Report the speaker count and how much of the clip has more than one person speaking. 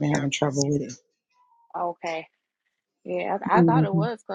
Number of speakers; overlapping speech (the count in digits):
2, about 11%